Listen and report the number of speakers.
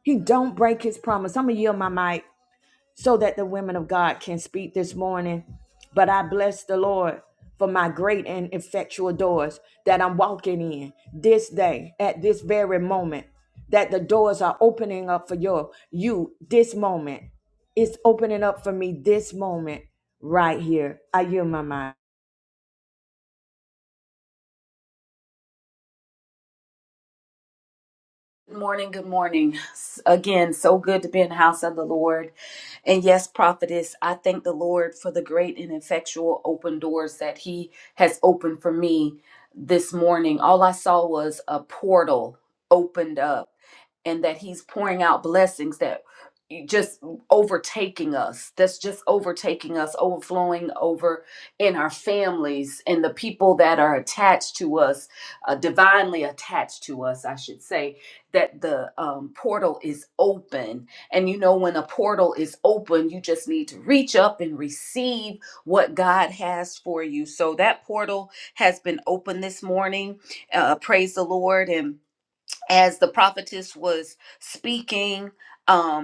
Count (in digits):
2